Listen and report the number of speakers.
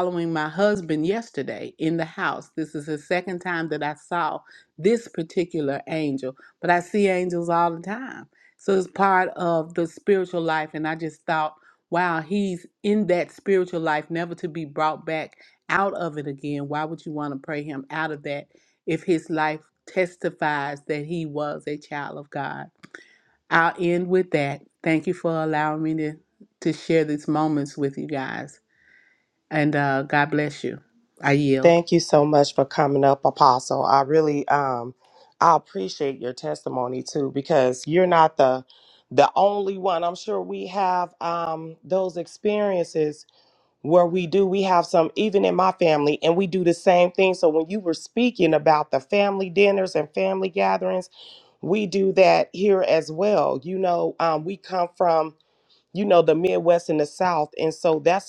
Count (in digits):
2